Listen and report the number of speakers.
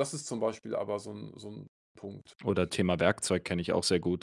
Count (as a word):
two